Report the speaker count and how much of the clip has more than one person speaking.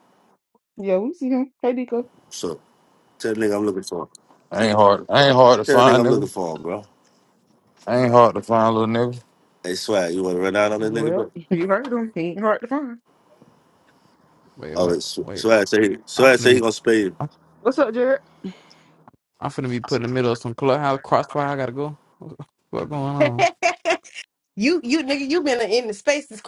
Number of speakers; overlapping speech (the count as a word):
five, about 9%